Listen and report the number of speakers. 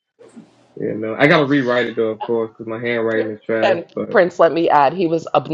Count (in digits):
2